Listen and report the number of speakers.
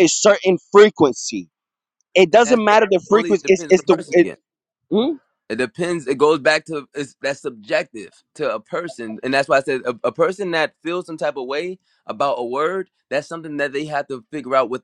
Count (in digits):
2